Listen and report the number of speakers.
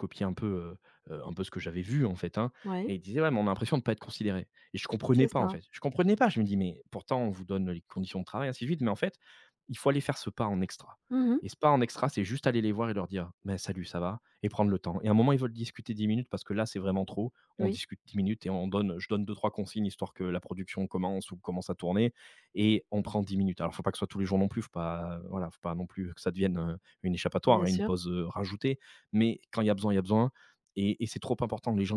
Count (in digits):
2